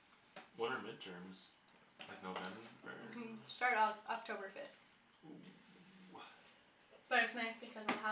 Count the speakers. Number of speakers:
2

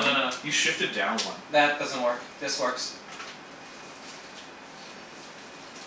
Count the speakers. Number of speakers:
2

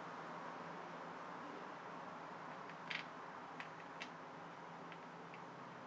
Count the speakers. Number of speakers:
0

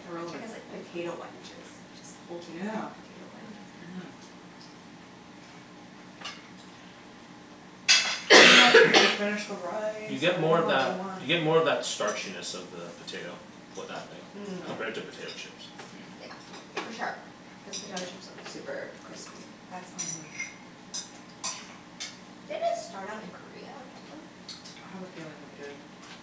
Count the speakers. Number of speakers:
3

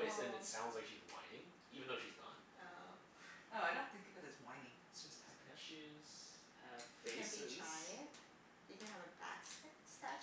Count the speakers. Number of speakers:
4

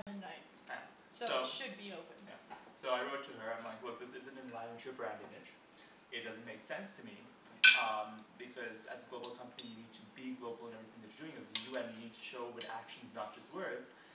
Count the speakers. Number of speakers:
2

